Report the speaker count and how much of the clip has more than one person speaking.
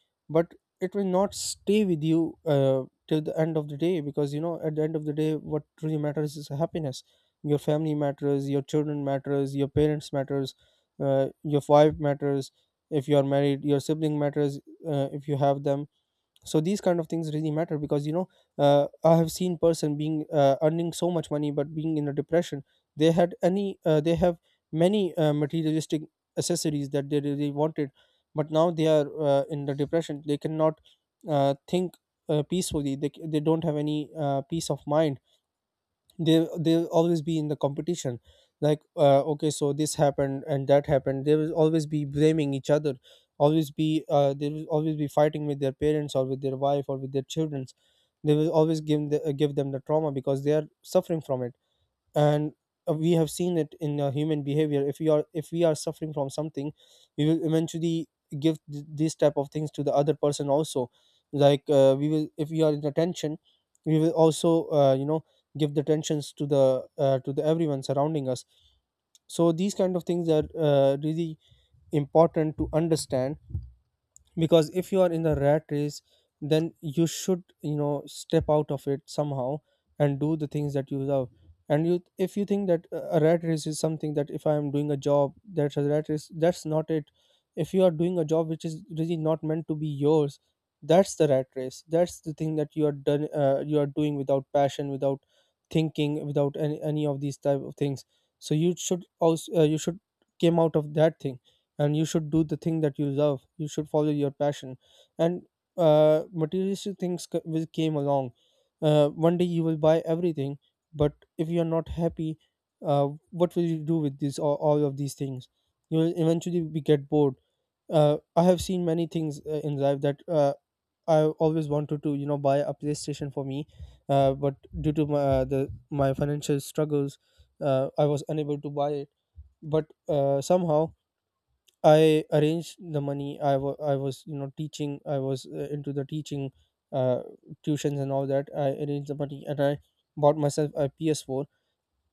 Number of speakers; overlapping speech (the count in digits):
1, no overlap